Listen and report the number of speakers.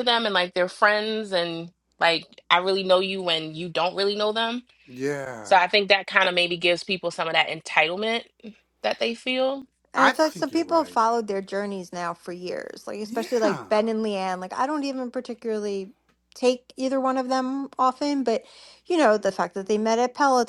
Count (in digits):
3